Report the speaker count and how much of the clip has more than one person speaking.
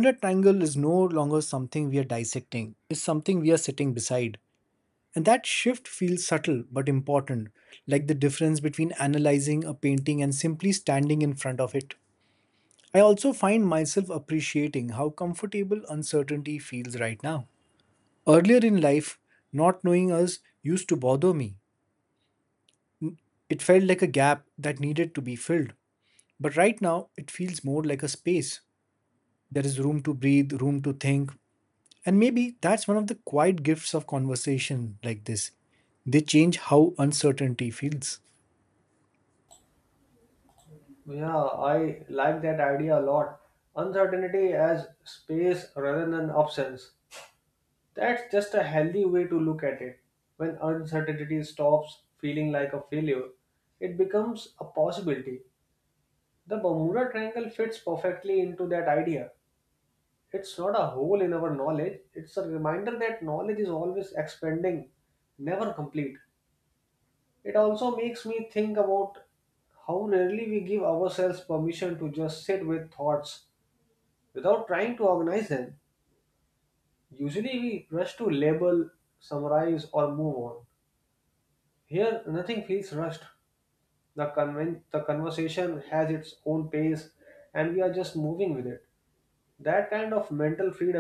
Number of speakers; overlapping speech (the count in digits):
2, no overlap